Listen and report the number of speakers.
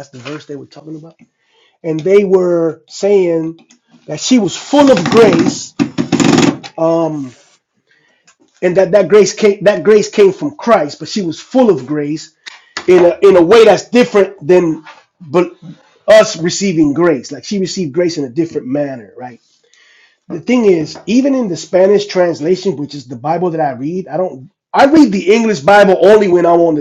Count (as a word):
one